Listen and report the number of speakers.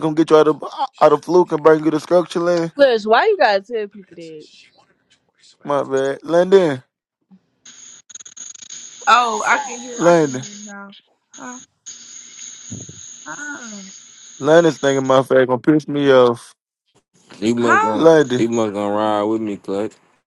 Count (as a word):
four